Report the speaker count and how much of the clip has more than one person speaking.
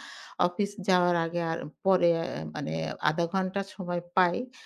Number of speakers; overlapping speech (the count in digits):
1, no overlap